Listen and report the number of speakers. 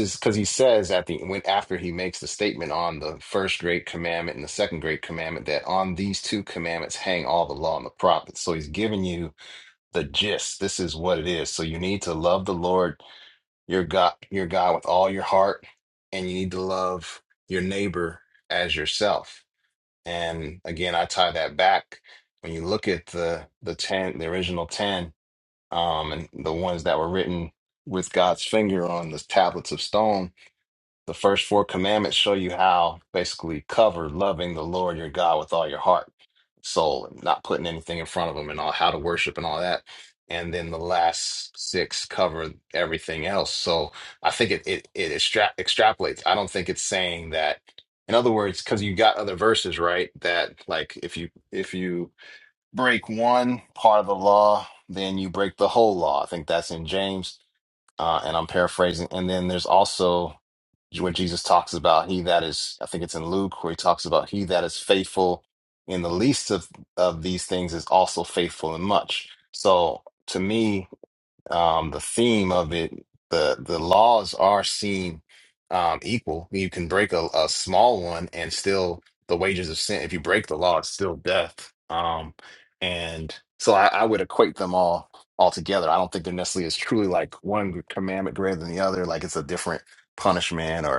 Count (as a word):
one